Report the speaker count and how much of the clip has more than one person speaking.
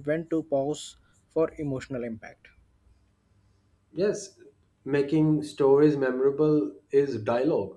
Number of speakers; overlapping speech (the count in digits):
2, no overlap